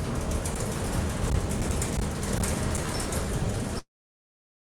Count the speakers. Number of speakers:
zero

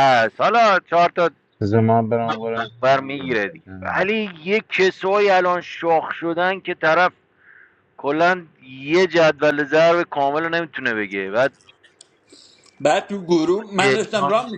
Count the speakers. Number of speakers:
three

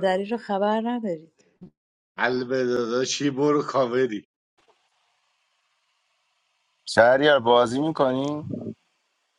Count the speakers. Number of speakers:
three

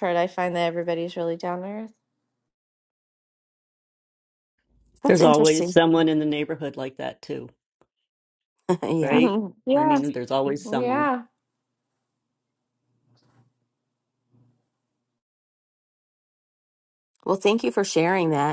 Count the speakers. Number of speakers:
three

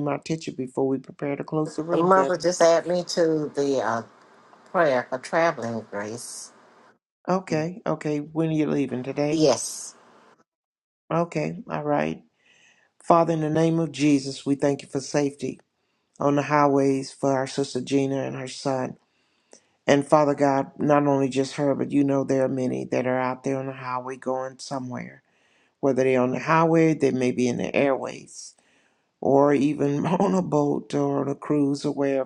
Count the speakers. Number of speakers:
two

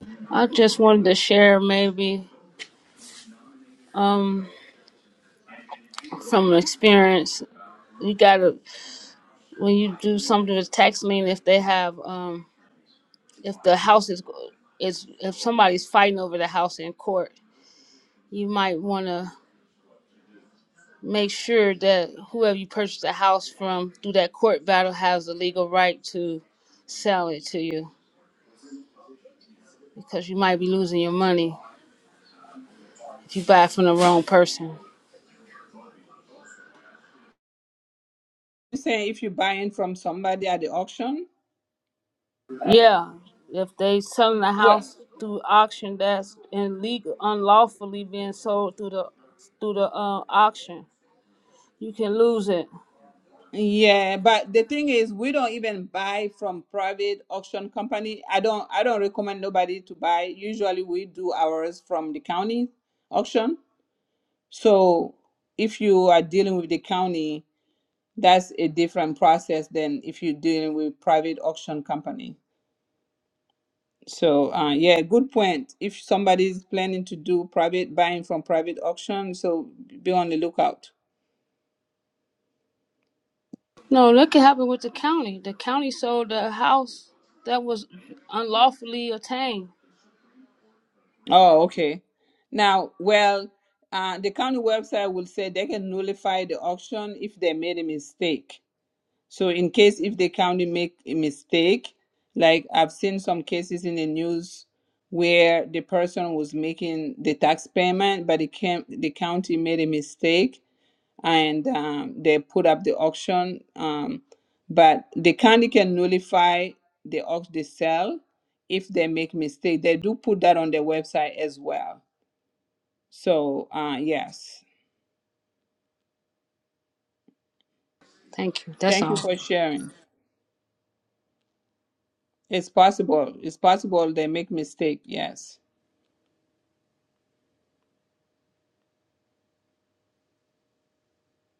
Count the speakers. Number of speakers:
two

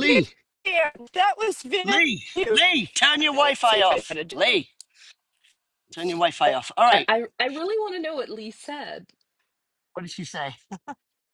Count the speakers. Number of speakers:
three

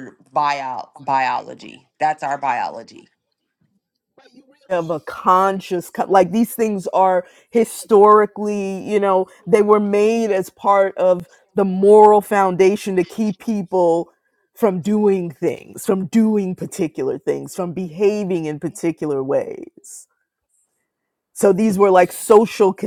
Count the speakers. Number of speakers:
two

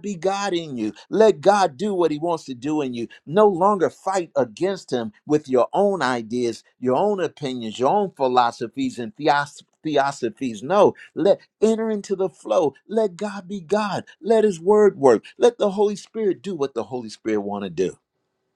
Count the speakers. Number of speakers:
one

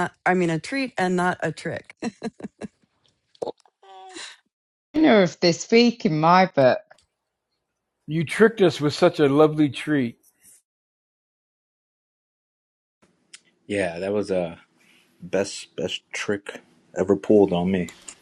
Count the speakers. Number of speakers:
four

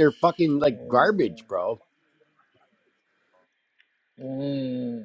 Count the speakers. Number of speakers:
two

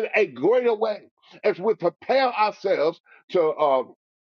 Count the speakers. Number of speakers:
one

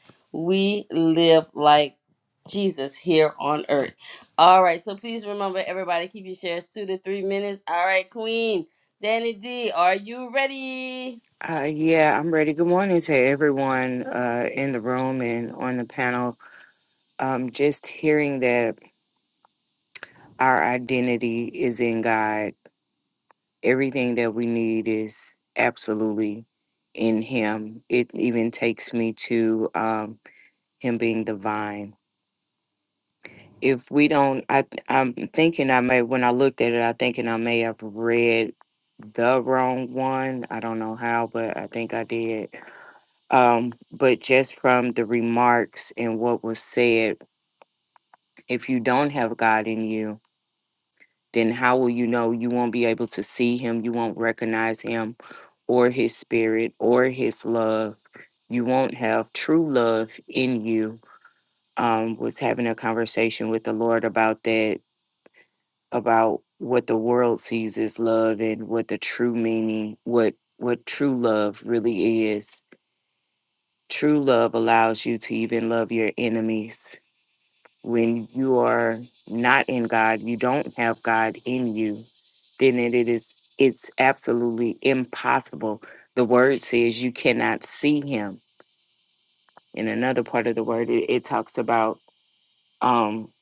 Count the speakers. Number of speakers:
two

